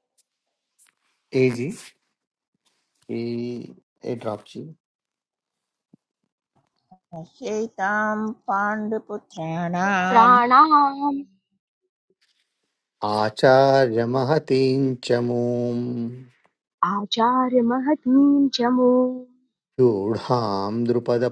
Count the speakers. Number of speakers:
3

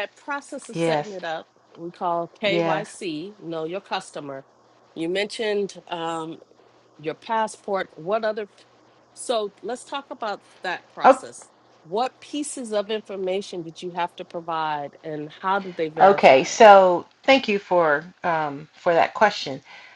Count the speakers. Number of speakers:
2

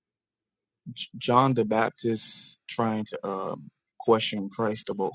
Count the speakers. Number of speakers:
1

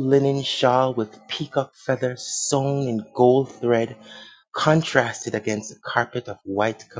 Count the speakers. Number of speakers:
1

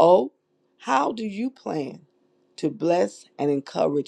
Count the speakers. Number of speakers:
1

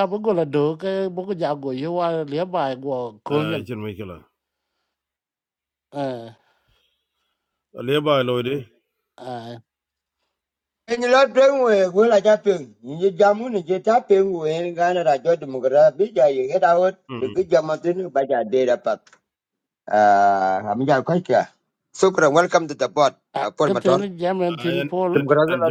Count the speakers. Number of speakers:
3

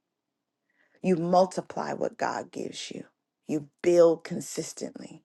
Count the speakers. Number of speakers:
1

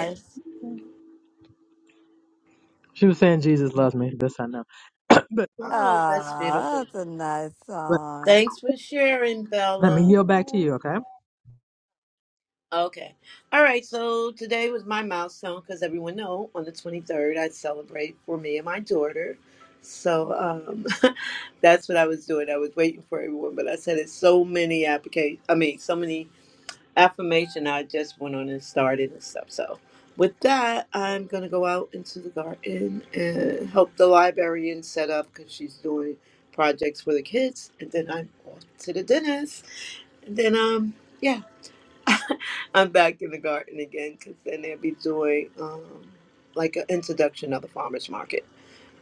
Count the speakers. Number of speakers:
3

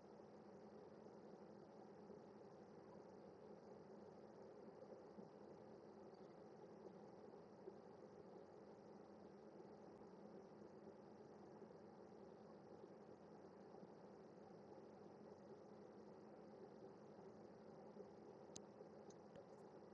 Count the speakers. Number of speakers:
0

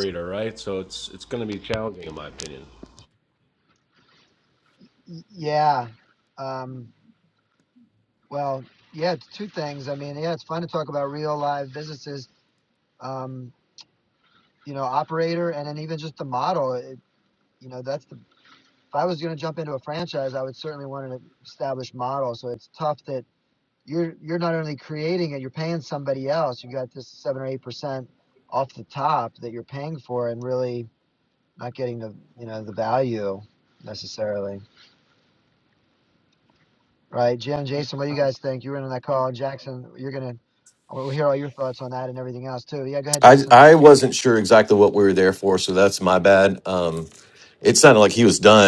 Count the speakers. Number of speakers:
3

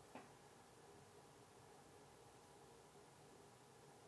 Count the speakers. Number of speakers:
0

